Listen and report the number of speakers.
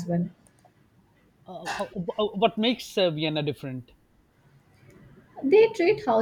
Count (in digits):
2